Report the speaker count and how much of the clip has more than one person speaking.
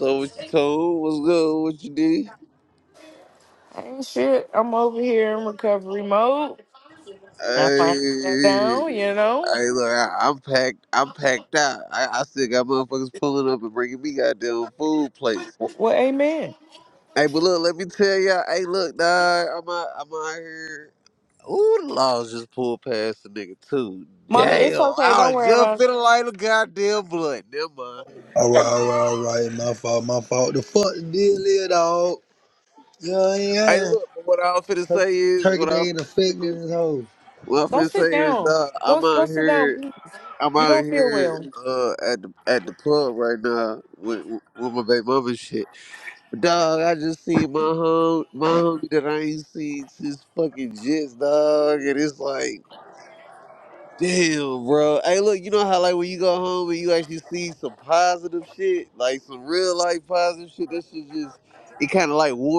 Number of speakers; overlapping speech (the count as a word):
three, about 10%